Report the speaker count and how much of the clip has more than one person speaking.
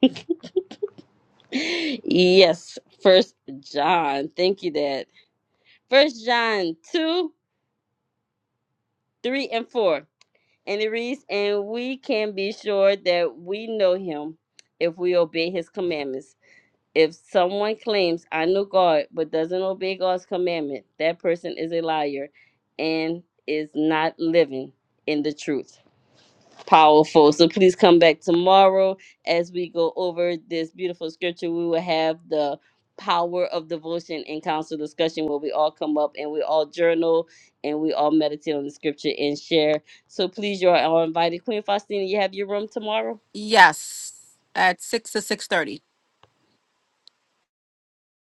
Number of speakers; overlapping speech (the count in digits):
2, no overlap